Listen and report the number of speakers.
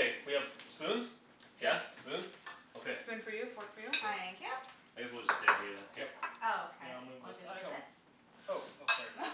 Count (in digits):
4